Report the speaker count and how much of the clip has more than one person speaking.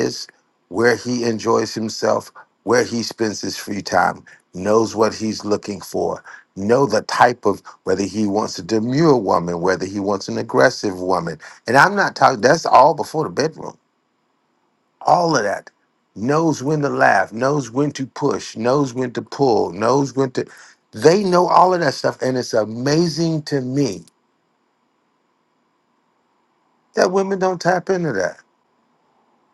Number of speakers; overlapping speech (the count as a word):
one, no overlap